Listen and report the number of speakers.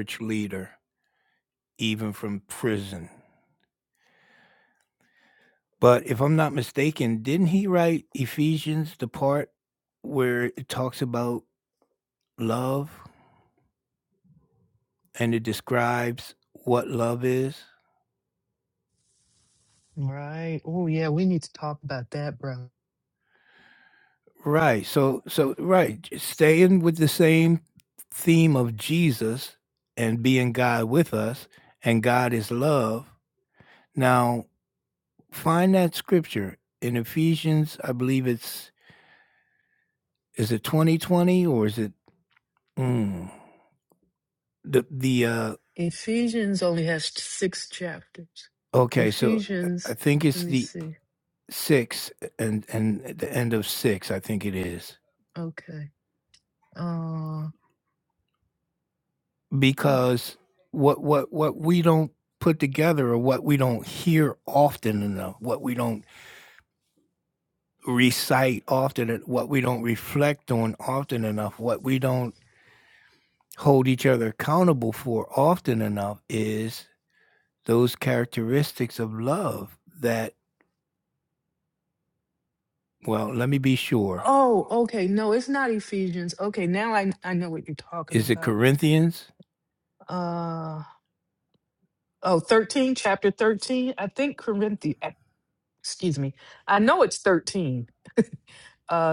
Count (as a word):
two